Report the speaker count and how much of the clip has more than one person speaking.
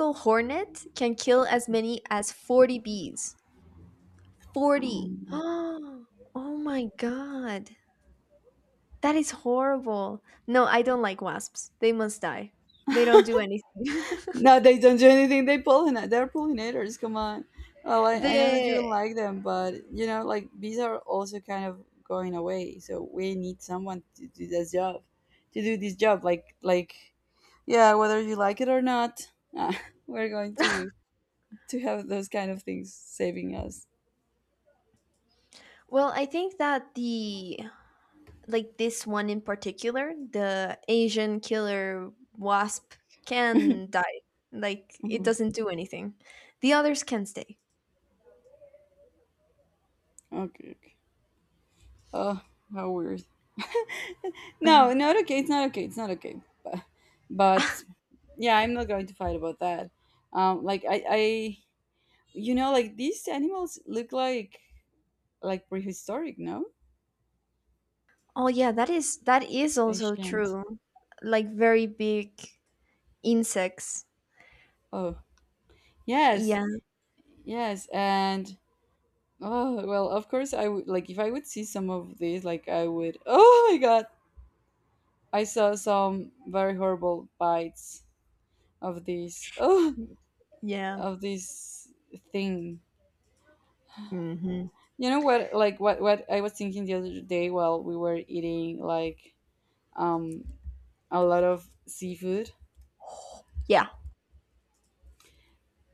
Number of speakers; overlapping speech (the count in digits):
2, about 3%